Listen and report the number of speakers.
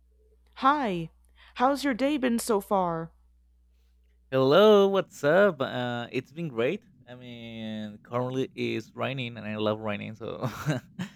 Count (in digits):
2